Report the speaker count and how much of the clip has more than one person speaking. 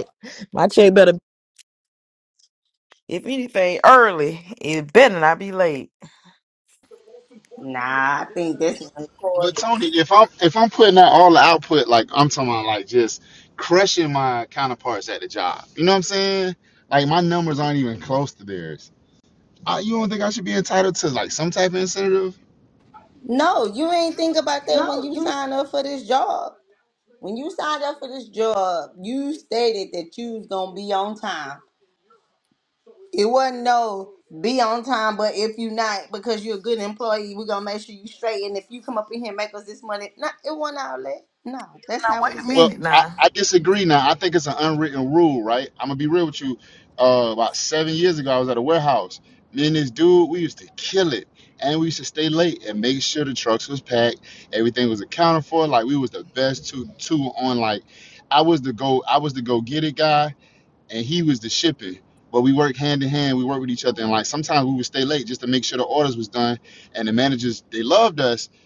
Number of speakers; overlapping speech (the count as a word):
three, about 2%